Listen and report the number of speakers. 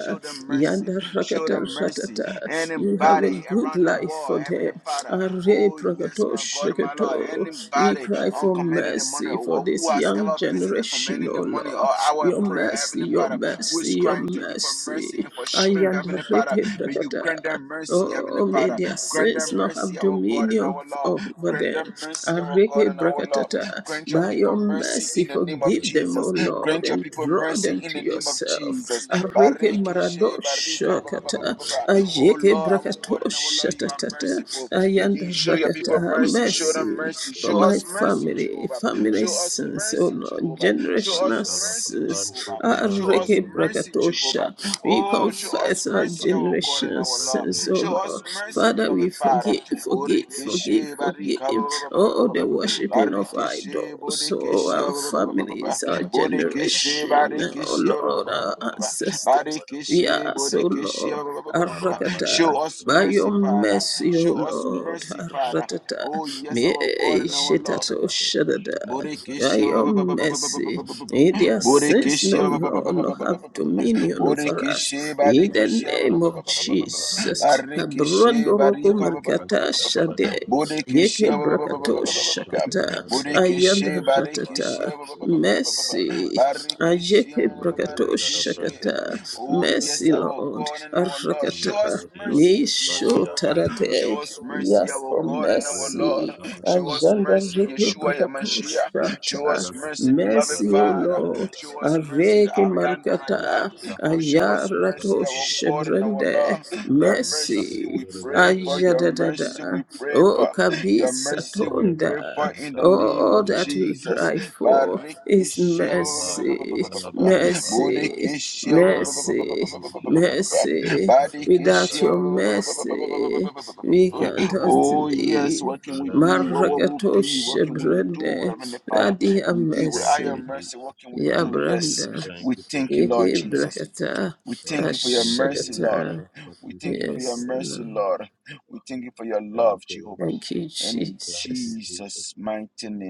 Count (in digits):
3